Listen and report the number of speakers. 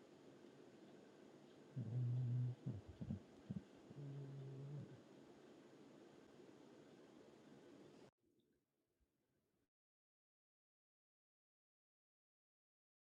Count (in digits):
0